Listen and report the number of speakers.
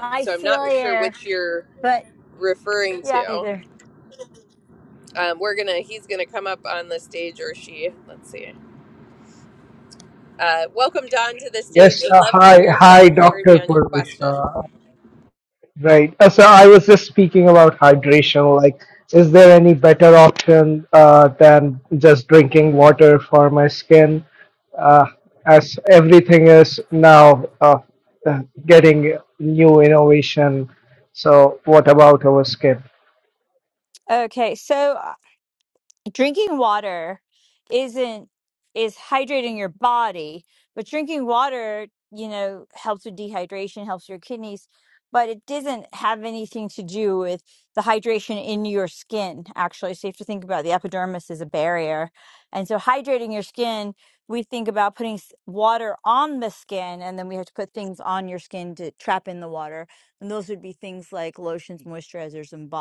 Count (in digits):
3